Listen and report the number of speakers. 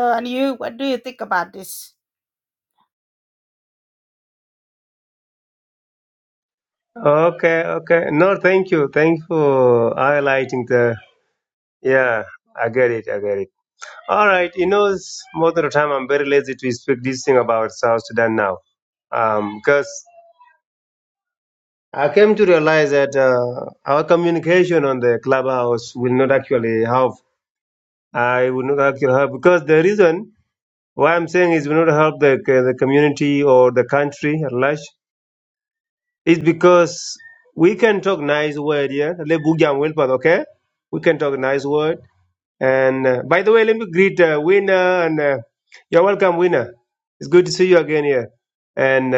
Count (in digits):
2